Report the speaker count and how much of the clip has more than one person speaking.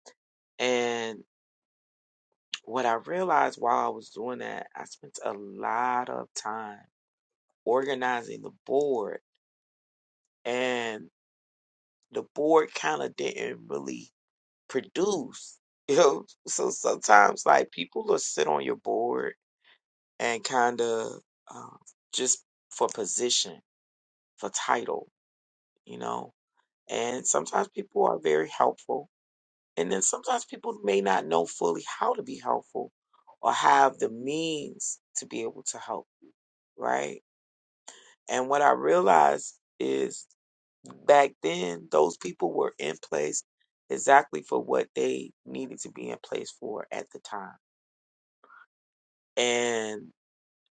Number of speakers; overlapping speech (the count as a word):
one, no overlap